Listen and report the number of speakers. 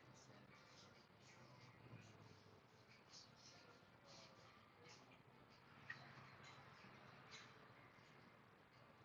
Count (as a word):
zero